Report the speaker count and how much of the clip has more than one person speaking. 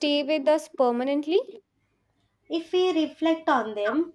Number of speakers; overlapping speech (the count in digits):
2, no overlap